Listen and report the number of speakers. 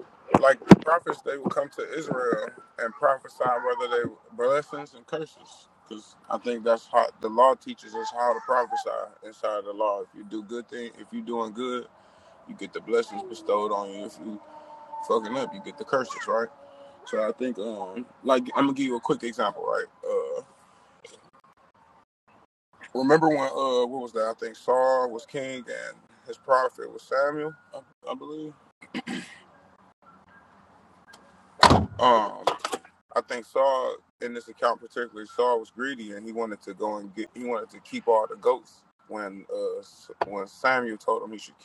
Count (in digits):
1